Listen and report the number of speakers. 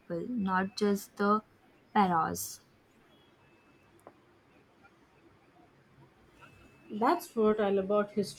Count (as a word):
two